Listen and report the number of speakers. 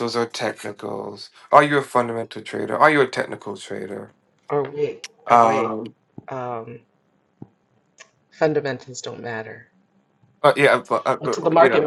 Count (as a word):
two